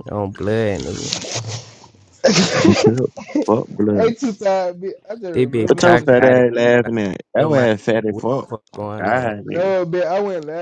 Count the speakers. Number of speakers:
three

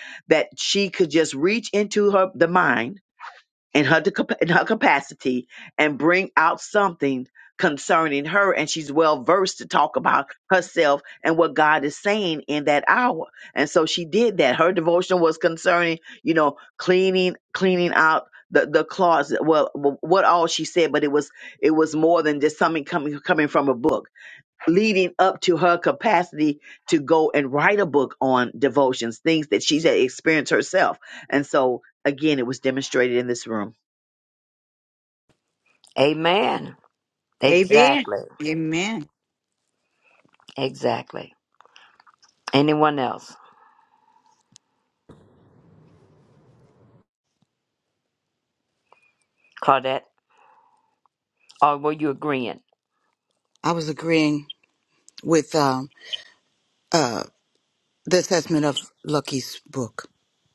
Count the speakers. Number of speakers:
four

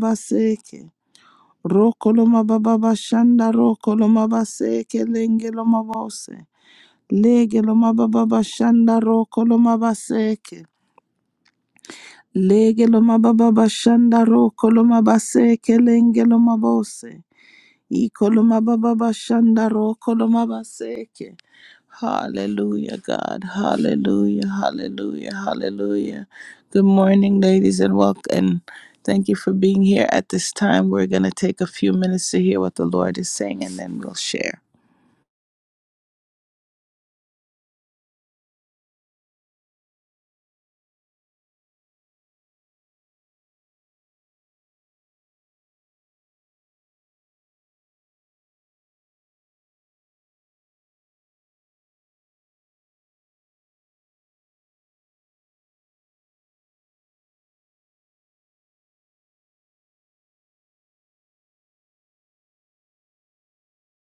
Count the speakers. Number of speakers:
one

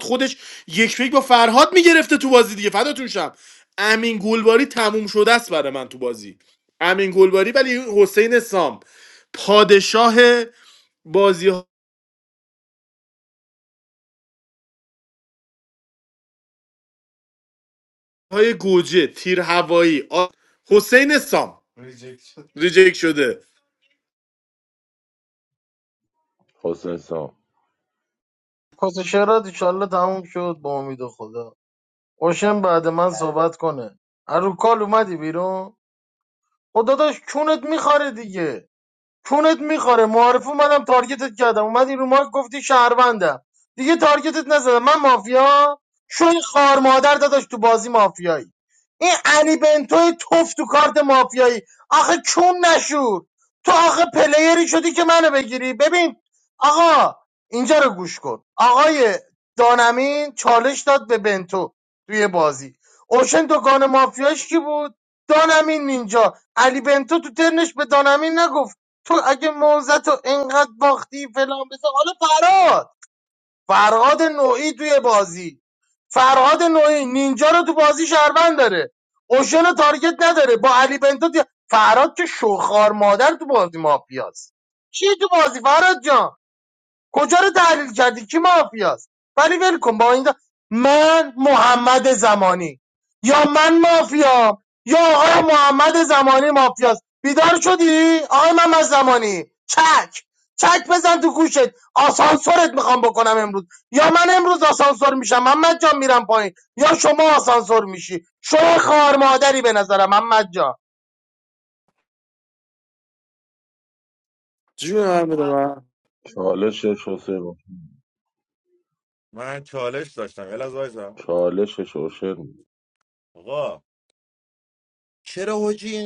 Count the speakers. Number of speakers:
four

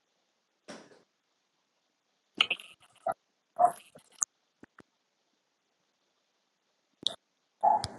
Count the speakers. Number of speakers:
zero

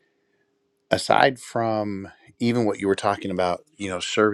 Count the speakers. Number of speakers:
one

